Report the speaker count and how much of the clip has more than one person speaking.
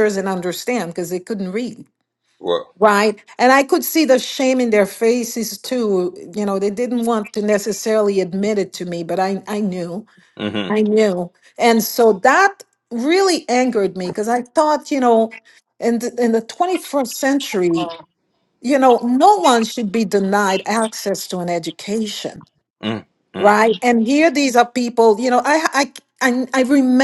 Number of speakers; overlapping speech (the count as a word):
two, about 1%